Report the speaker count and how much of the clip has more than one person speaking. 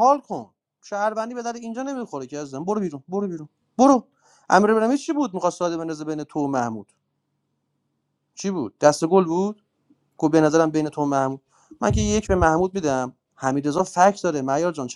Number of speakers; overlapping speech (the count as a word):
one, no overlap